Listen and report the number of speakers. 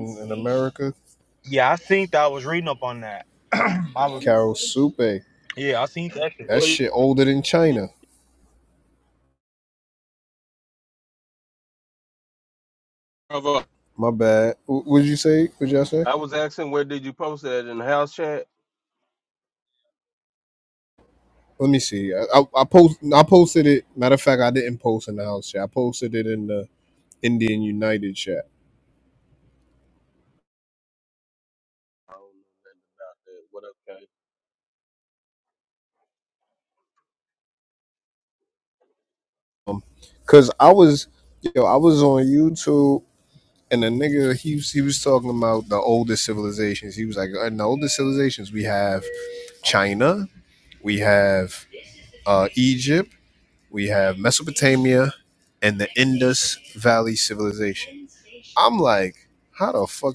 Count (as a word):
three